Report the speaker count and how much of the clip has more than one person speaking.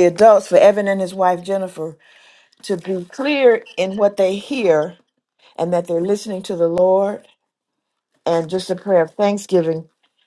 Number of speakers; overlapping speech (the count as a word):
one, no overlap